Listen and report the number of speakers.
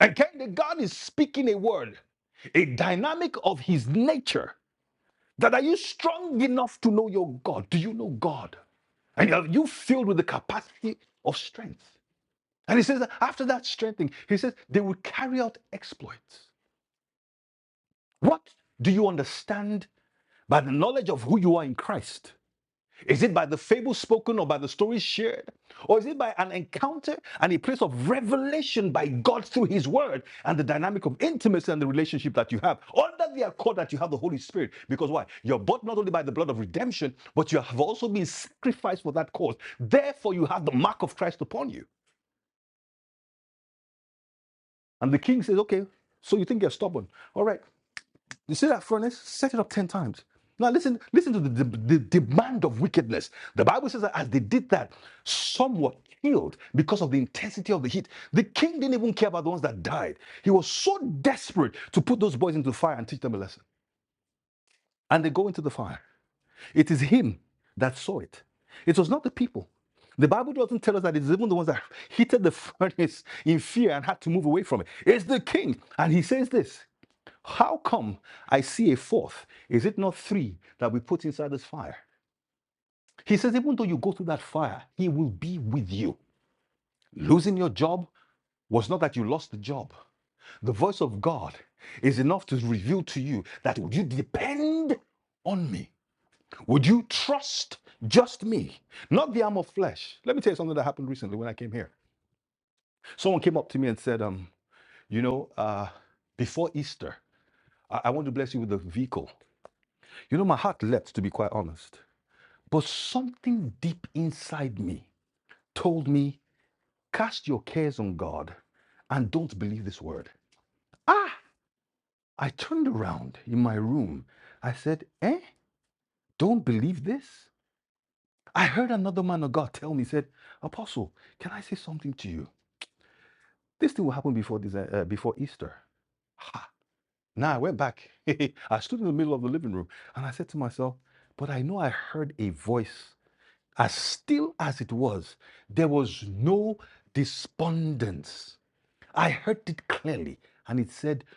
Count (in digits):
1